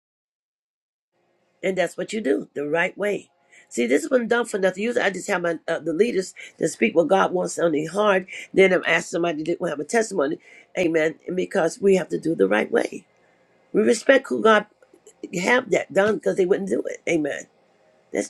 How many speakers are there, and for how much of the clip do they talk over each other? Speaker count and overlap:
one, no overlap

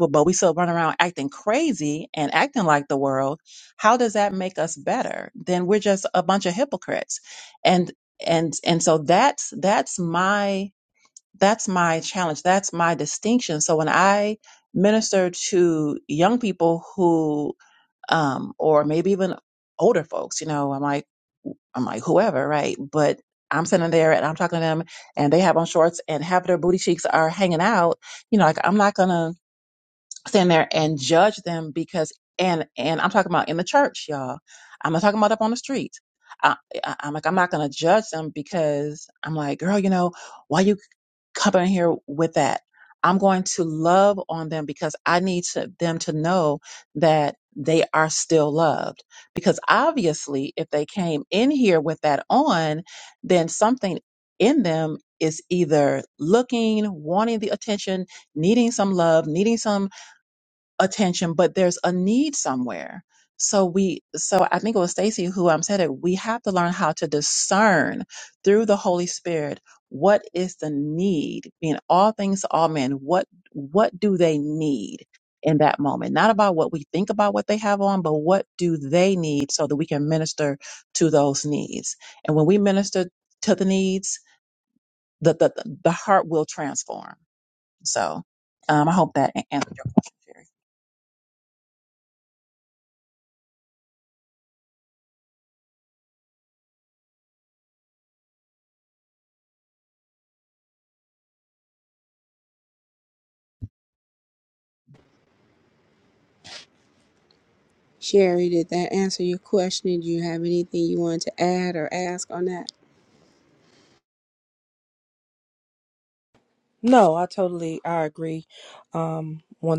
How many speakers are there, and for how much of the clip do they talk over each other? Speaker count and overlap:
three, no overlap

